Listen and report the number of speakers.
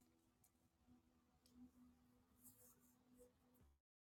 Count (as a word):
zero